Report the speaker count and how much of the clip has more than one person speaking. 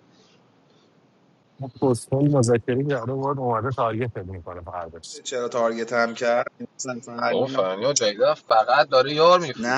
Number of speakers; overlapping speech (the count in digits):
3, about 6%